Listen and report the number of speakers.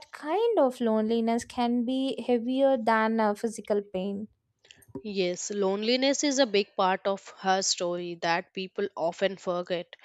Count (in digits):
2